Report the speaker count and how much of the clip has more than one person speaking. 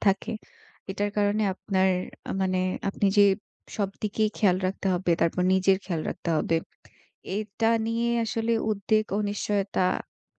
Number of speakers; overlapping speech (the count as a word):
one, no overlap